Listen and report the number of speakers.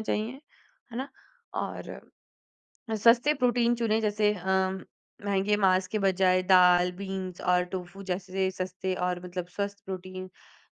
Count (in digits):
1